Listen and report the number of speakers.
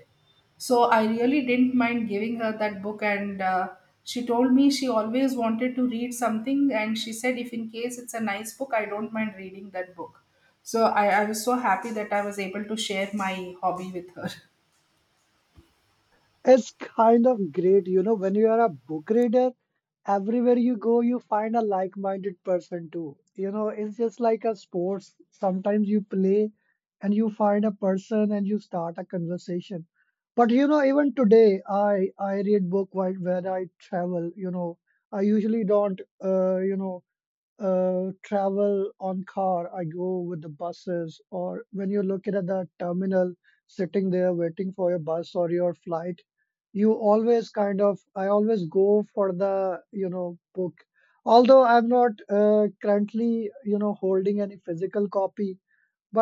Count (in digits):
2